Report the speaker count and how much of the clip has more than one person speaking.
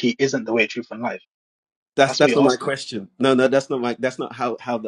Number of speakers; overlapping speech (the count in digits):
2, about 13%